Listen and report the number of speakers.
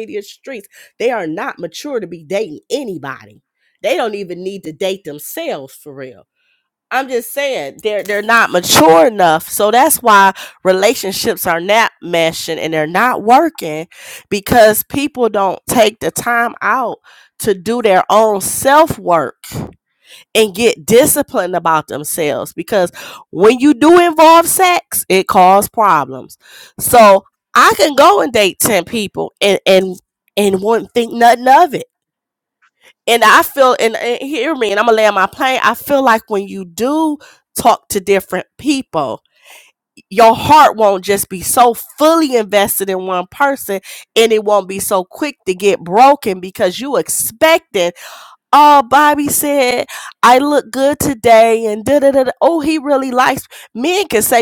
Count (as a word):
one